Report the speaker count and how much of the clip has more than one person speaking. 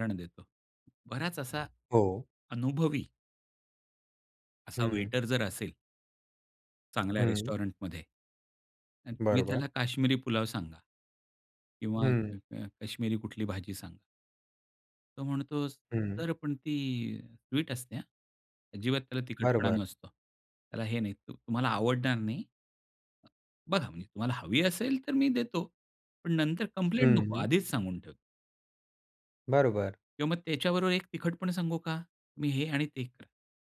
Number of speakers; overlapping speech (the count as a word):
two, about 7%